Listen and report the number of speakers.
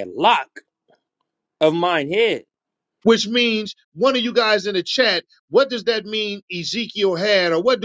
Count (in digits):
2